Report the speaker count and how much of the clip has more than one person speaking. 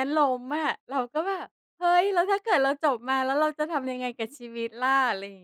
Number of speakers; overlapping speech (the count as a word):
one, no overlap